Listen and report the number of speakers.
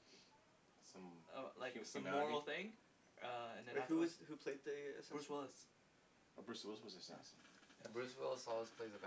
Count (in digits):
4